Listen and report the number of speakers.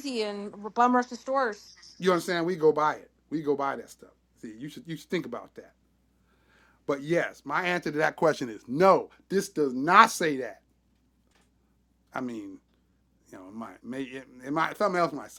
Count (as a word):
two